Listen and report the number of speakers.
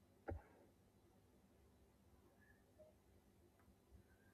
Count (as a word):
zero